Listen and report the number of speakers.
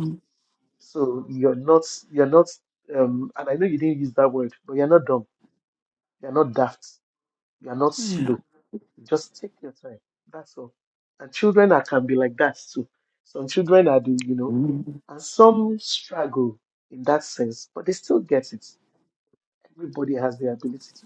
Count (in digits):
2